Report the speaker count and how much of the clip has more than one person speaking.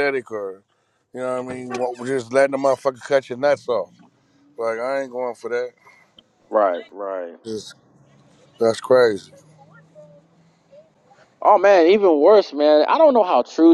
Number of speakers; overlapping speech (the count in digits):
2, no overlap